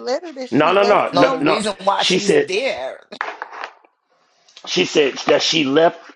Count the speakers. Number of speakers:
3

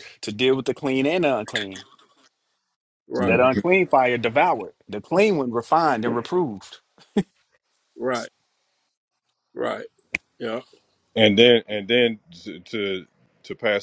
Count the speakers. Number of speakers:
3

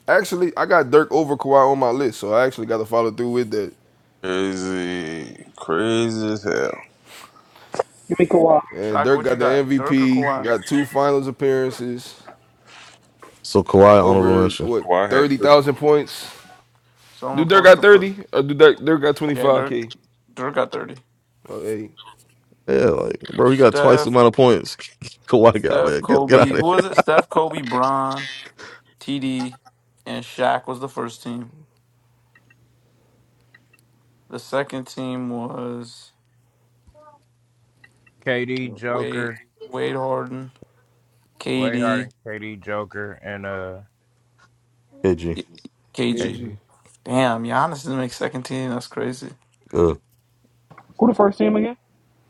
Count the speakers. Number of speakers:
6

